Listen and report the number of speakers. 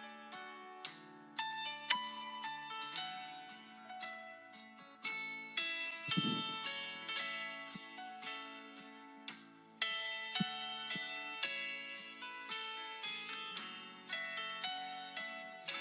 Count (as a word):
zero